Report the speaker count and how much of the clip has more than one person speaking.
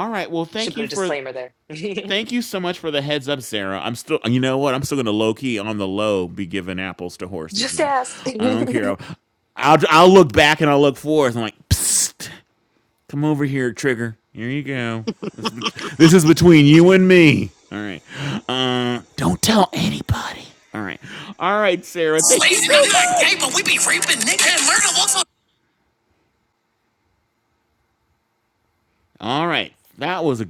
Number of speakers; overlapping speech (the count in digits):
3, about 8%